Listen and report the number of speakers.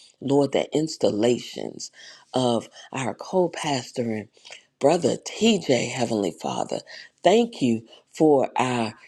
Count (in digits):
1